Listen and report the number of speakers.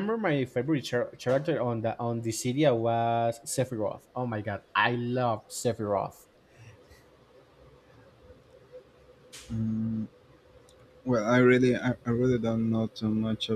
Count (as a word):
two